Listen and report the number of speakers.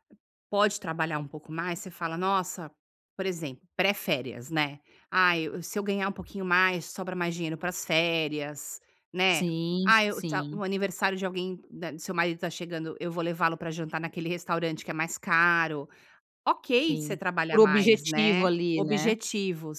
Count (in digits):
2